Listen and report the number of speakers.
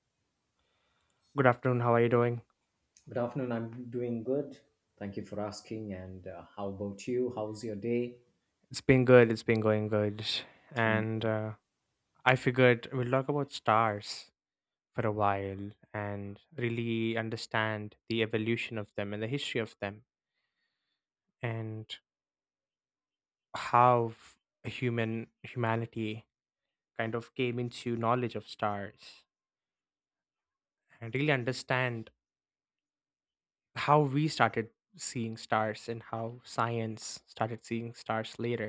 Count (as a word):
two